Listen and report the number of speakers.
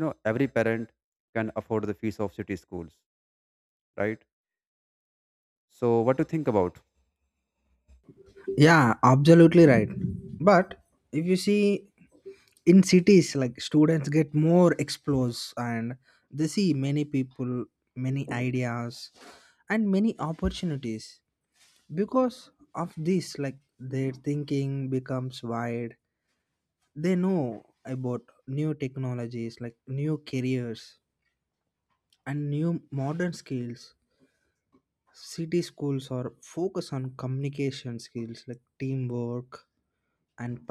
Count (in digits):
2